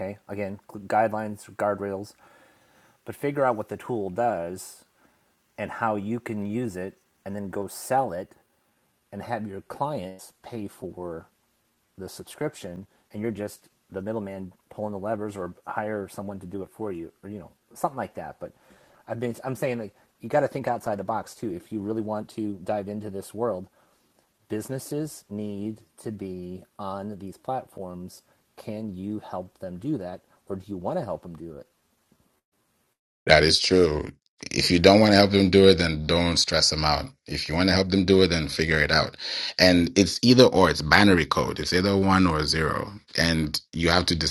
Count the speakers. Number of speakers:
2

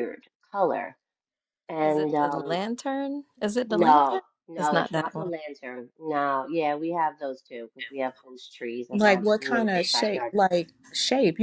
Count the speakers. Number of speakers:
3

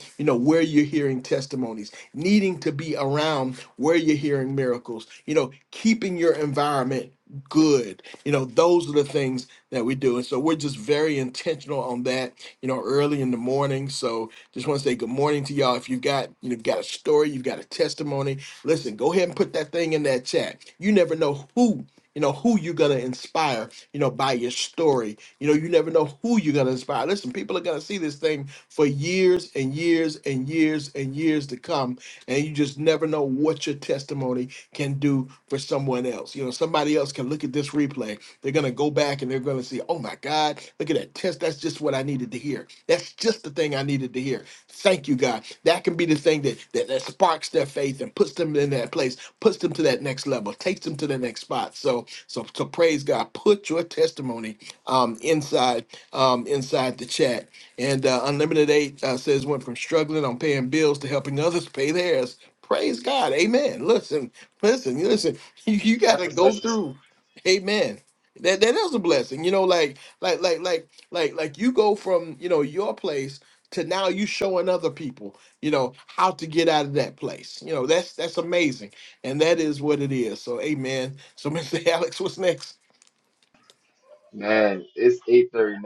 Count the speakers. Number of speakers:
2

